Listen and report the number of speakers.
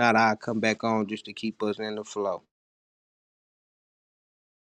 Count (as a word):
one